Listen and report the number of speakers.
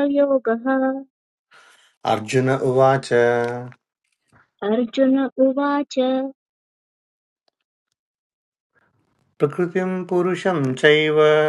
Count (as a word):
two